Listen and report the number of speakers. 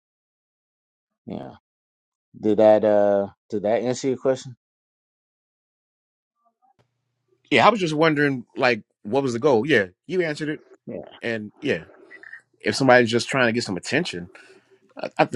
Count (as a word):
two